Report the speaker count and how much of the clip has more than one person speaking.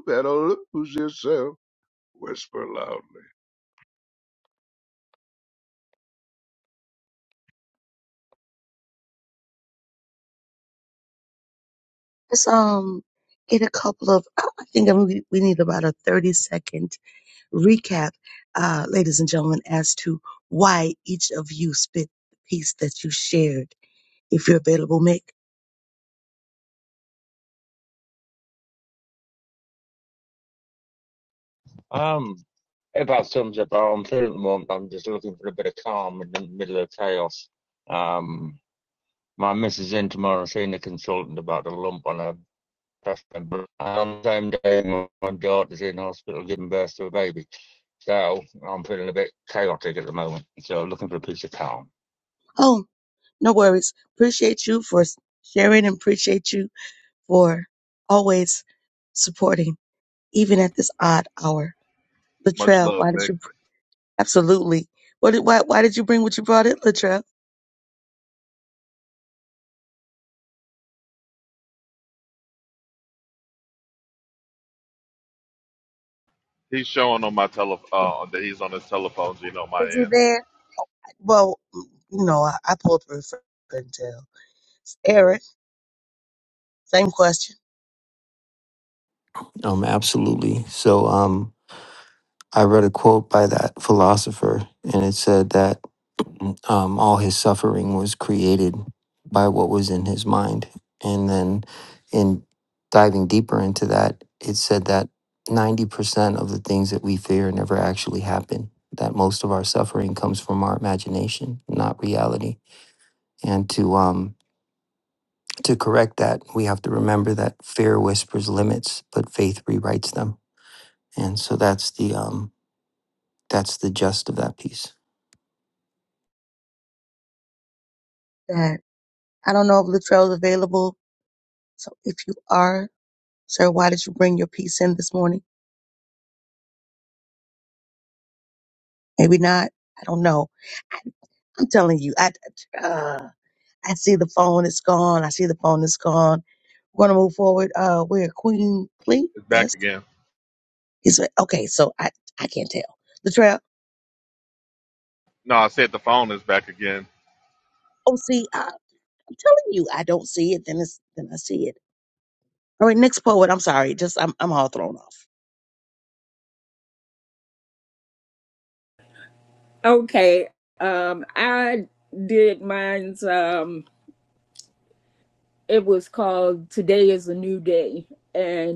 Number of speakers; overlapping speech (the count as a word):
six, about 1%